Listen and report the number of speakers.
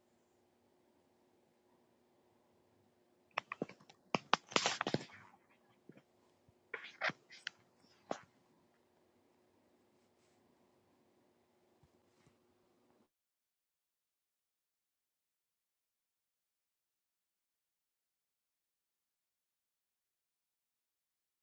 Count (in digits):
0